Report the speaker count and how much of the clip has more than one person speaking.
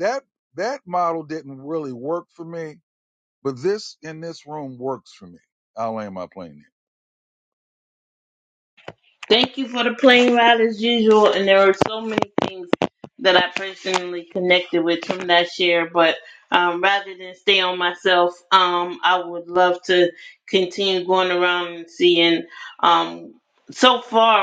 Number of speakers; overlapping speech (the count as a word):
two, no overlap